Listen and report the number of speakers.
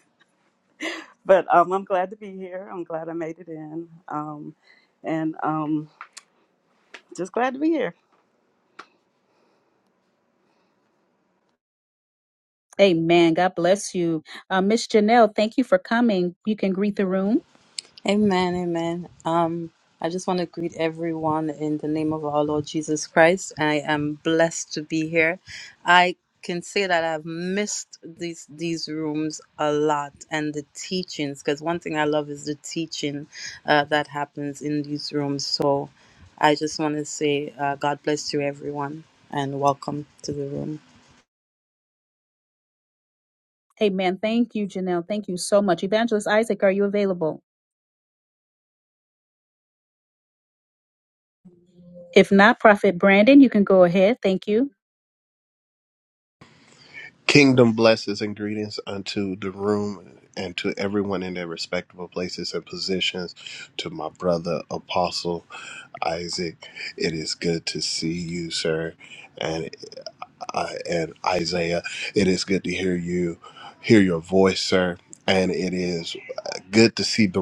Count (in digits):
4